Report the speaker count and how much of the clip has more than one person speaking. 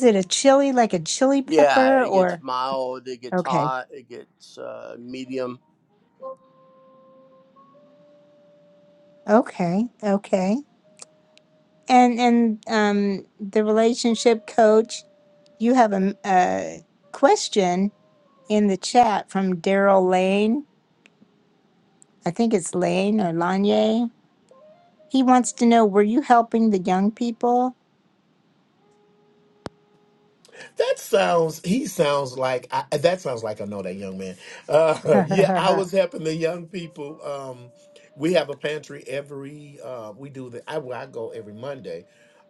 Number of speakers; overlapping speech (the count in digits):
3, about 3%